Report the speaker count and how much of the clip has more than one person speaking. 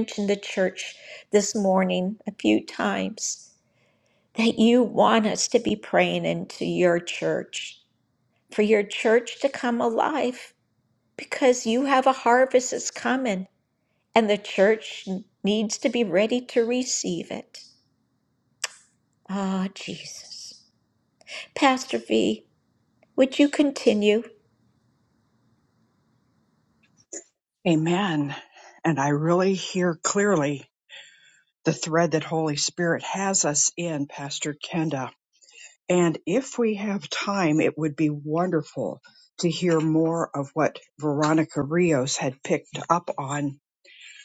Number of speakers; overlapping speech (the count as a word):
two, no overlap